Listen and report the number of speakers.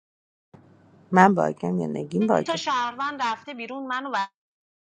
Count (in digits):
2